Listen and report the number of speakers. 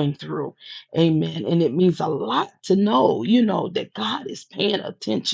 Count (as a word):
one